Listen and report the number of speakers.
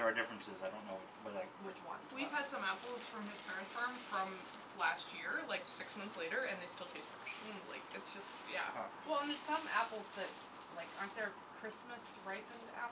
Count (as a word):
three